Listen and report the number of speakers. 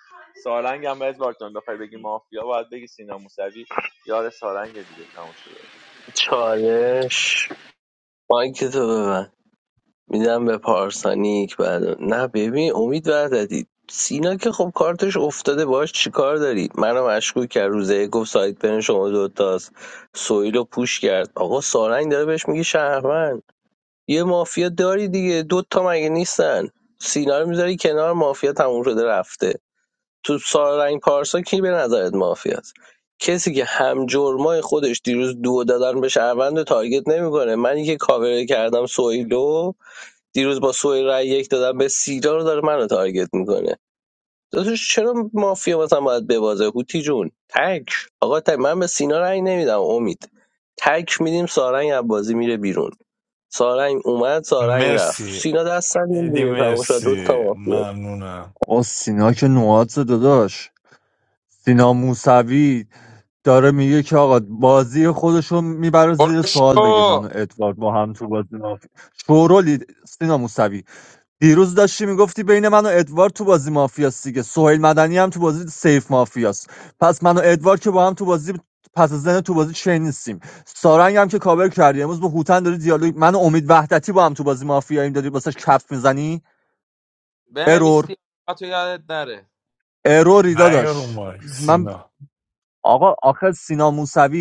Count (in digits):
5